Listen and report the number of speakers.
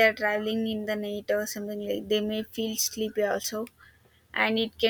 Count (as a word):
one